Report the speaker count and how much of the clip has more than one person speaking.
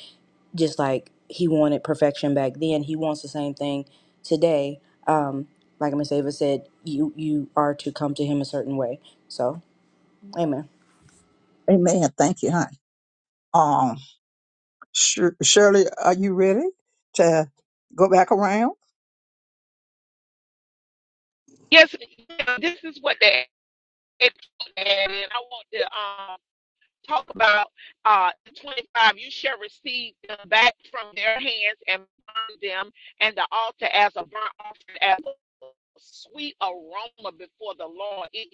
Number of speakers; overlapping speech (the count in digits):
3, no overlap